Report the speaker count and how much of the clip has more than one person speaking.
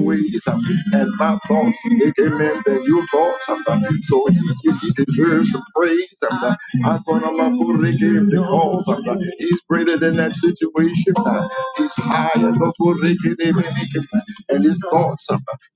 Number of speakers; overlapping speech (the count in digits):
1, no overlap